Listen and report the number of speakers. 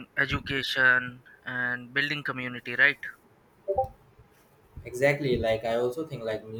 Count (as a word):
two